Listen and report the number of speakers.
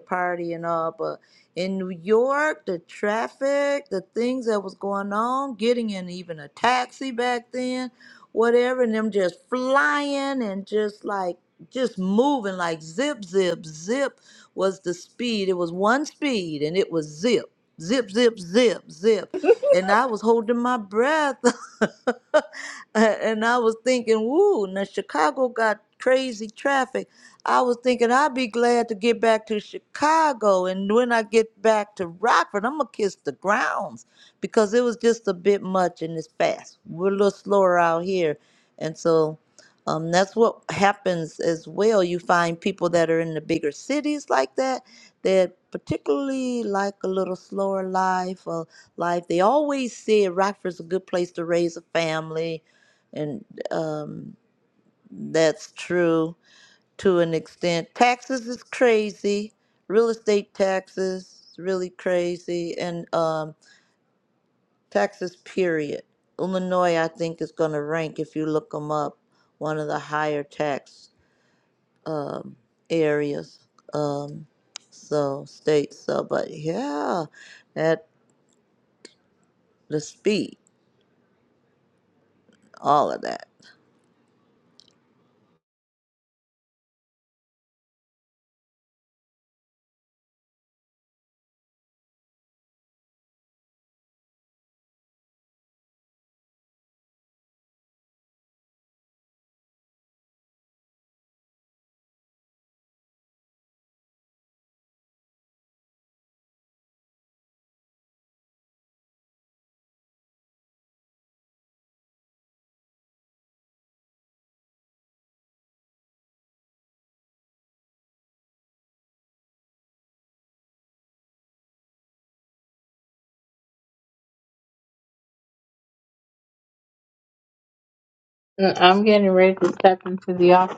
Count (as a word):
two